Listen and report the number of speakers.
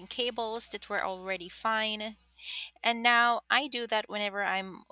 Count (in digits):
1